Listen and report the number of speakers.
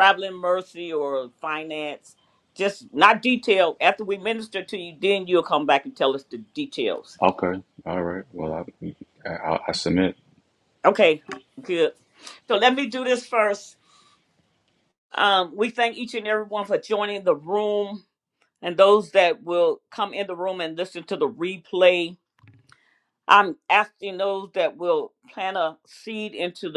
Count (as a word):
two